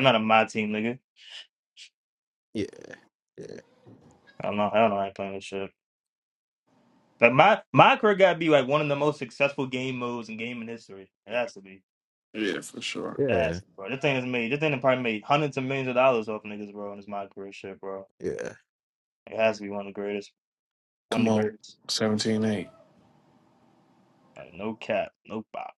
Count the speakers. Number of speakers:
3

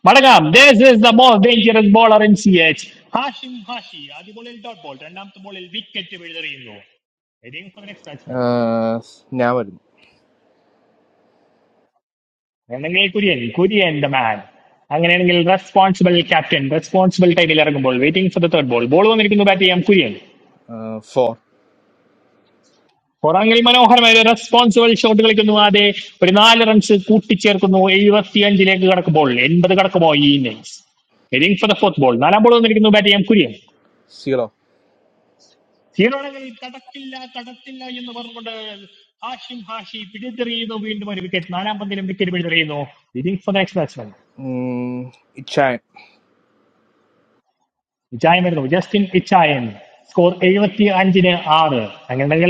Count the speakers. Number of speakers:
2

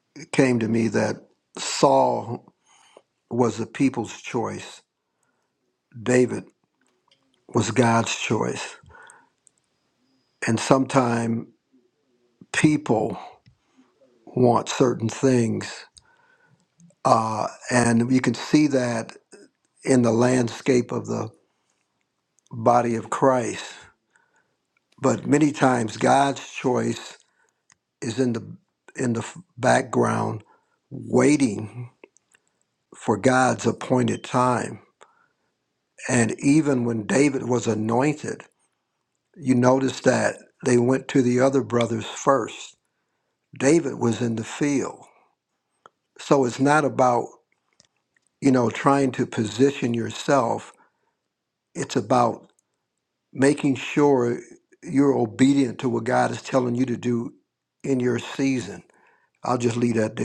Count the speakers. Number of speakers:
1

